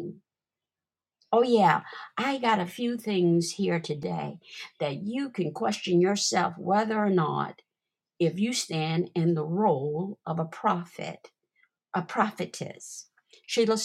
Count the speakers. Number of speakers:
one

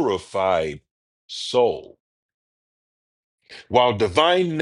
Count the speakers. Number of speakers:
one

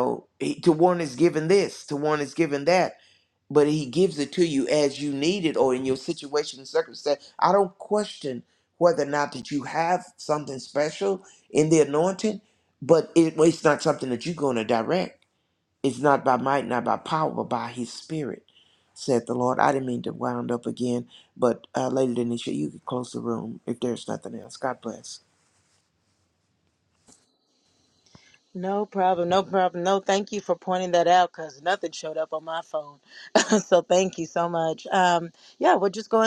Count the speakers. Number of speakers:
two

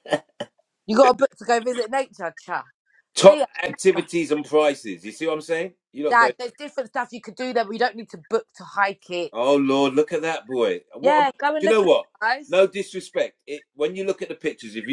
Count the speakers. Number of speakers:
two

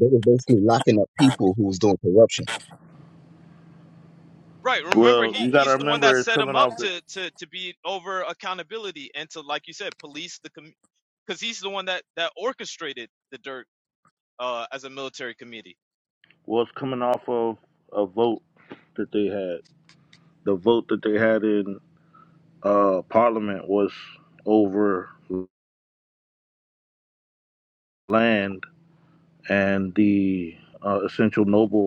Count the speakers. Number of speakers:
three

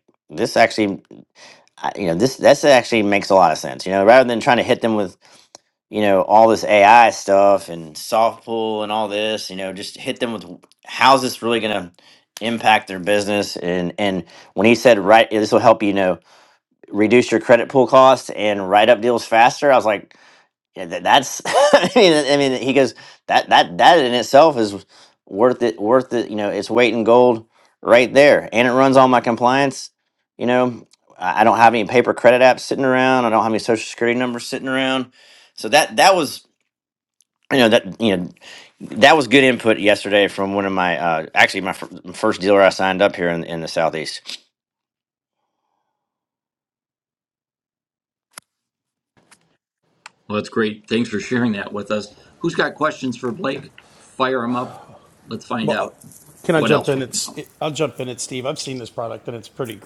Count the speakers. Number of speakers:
three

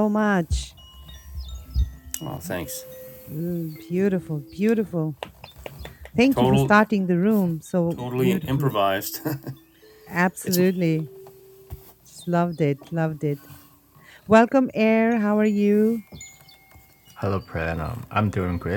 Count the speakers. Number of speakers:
three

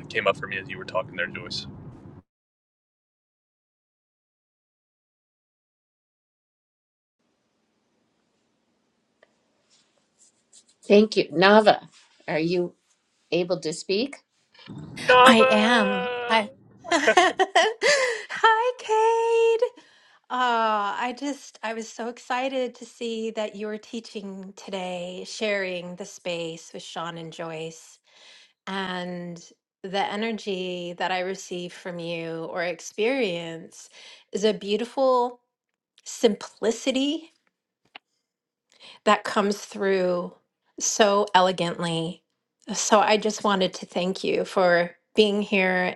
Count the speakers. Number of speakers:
three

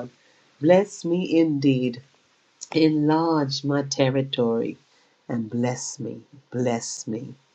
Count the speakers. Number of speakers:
one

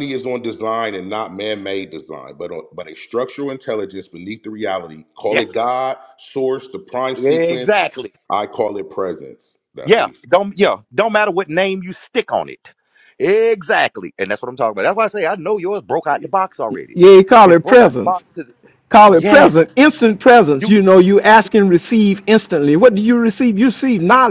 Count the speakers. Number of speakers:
three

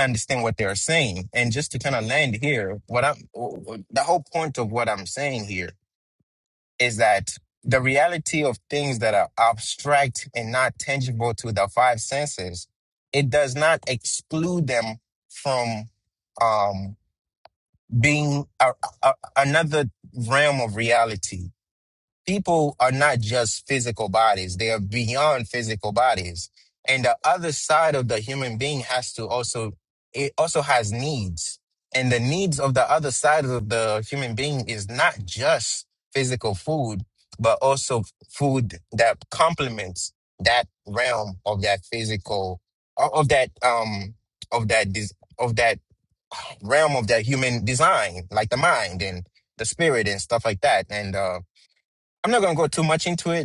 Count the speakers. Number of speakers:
one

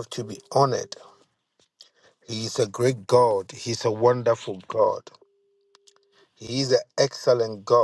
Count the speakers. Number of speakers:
one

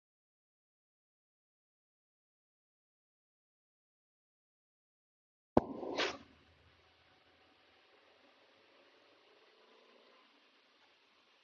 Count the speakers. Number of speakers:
zero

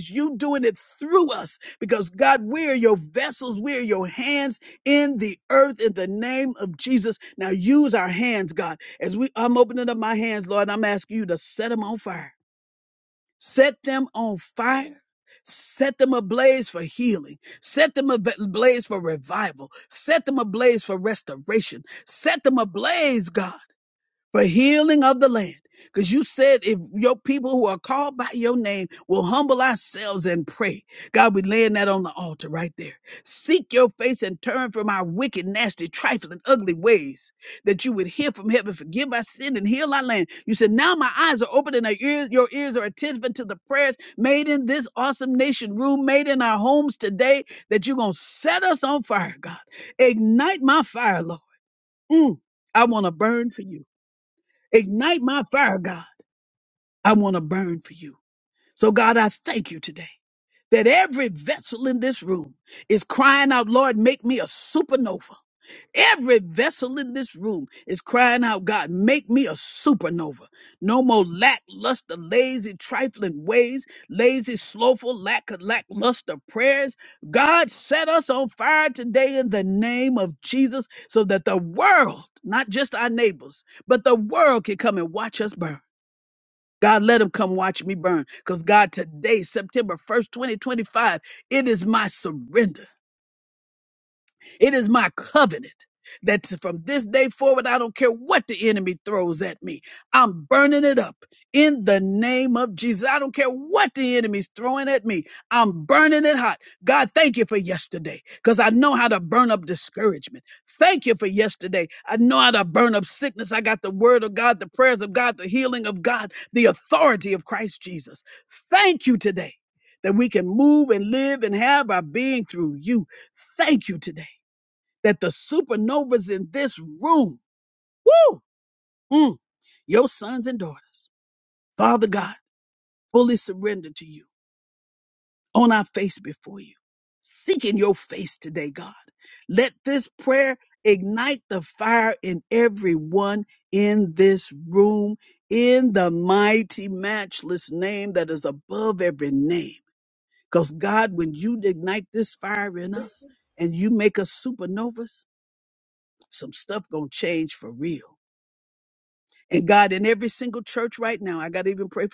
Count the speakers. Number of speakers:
one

